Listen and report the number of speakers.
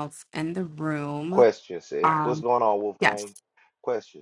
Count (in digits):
2